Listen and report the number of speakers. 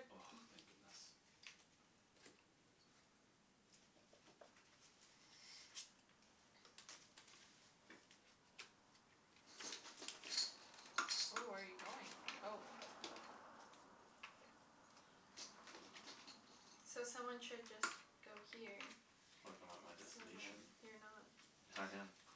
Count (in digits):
3